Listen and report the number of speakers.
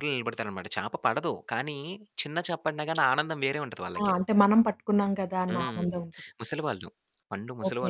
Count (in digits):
2